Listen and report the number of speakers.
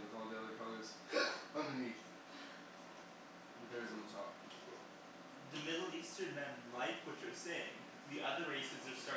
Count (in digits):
2